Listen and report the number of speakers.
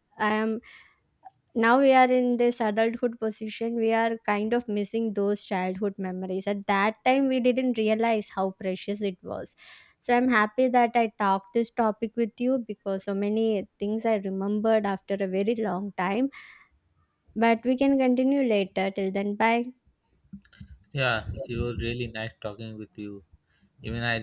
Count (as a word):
two